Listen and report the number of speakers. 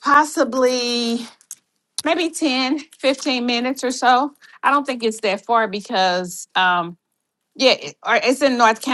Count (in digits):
1